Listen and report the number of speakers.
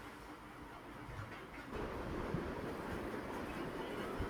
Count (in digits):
0